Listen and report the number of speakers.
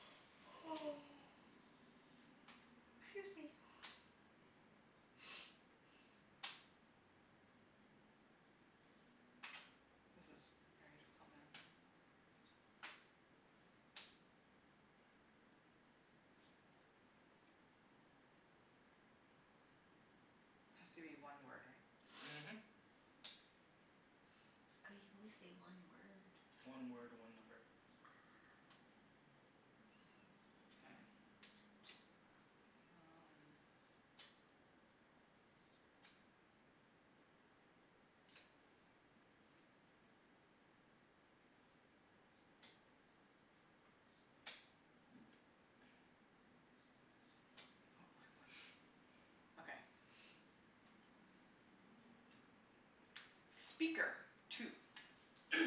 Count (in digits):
3